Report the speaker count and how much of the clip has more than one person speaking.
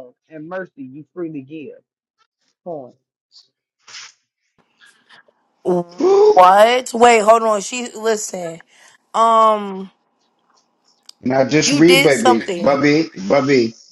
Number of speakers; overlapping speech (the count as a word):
three, about 8%